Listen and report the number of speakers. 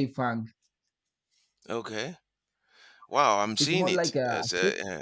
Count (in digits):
2